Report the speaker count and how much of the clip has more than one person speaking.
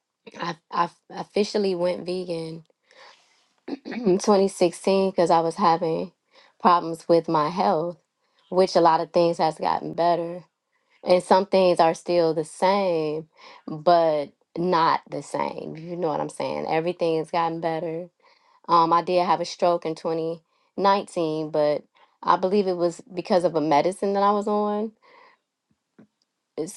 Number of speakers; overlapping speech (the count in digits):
1, no overlap